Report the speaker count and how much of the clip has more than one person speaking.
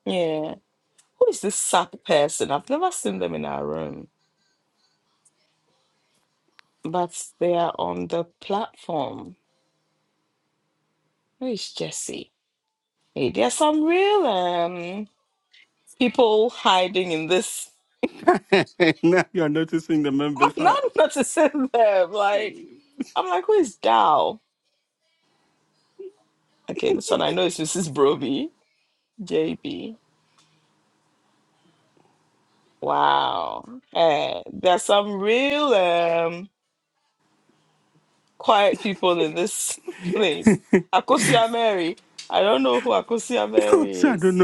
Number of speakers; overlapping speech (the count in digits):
2, about 2%